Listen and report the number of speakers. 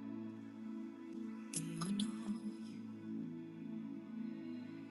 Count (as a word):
zero